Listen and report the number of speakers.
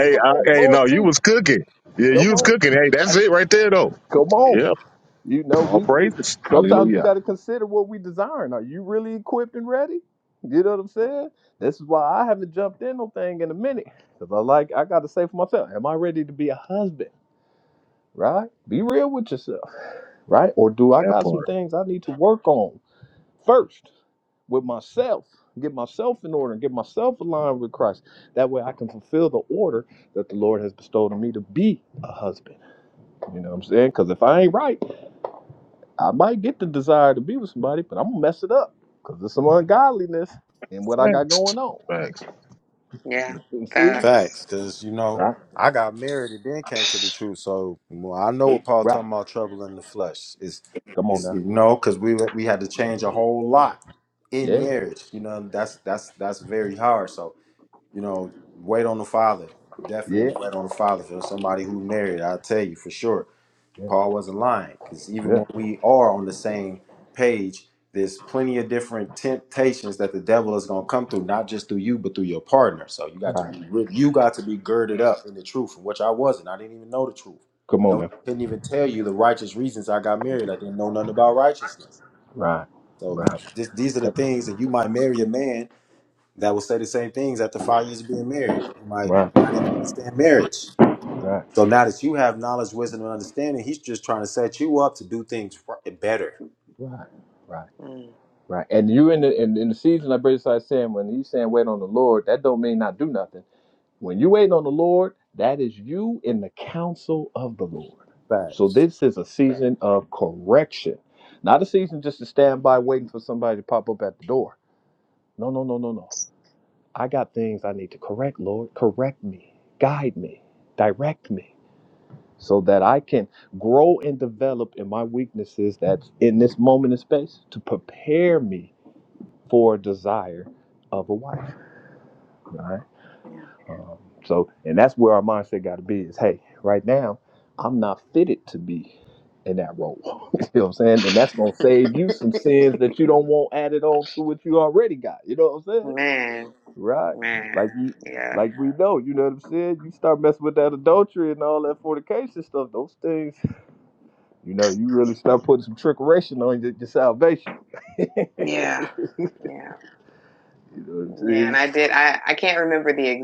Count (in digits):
4